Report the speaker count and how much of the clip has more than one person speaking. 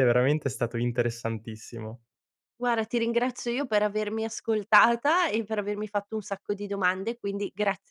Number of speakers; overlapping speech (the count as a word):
two, no overlap